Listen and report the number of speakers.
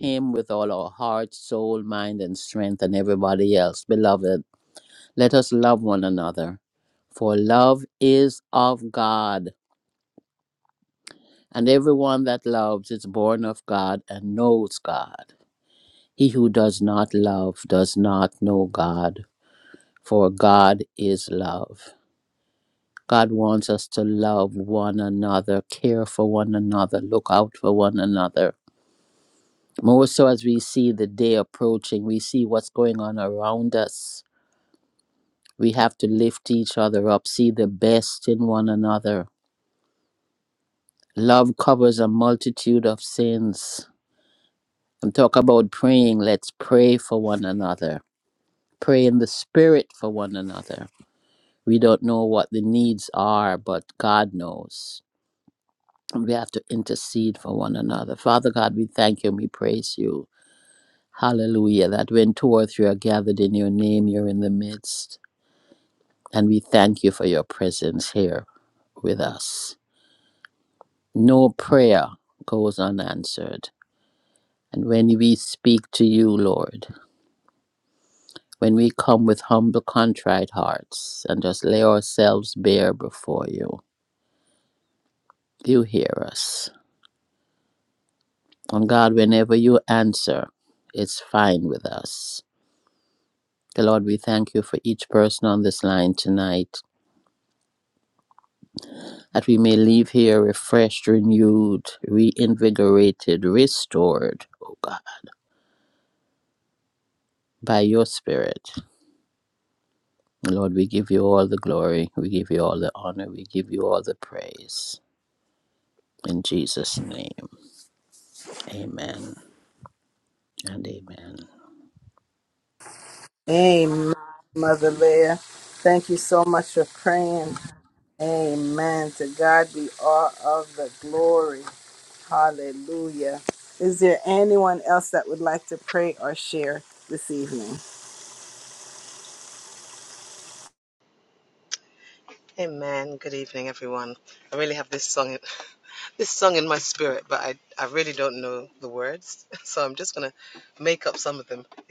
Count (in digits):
3